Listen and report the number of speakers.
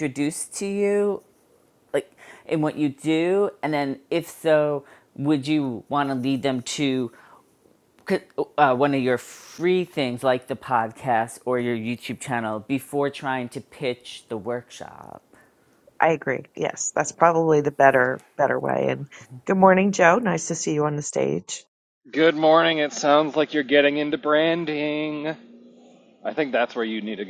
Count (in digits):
3